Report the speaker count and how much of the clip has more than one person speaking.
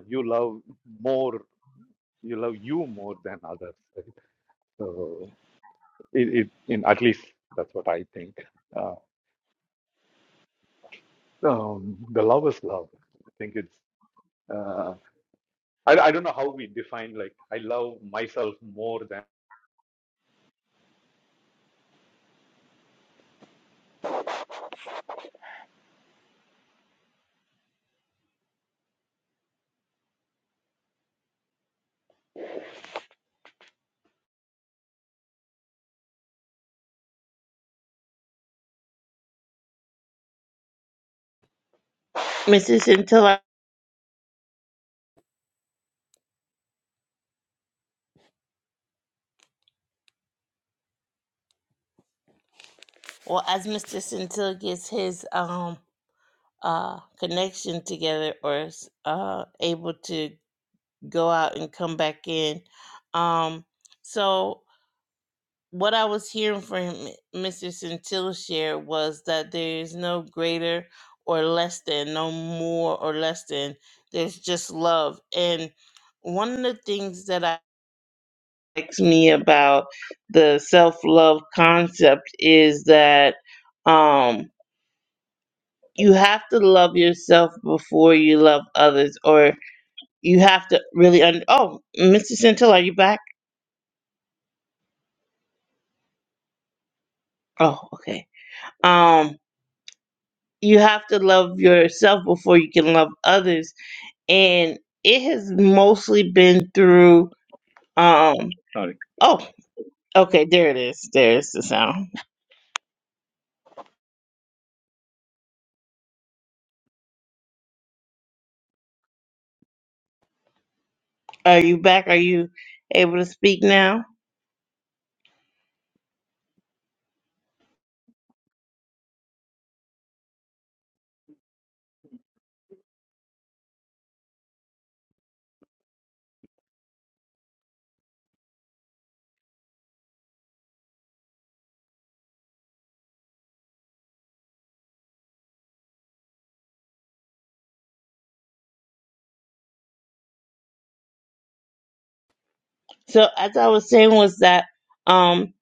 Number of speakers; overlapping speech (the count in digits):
2, no overlap